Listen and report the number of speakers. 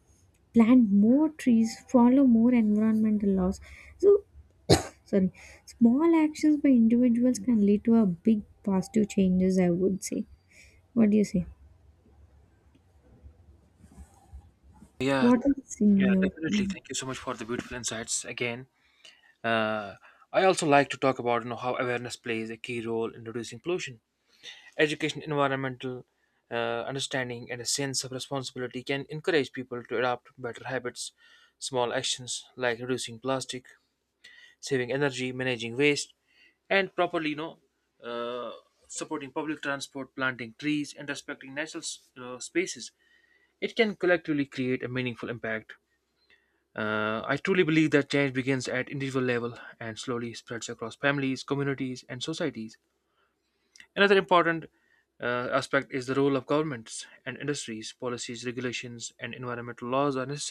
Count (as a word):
two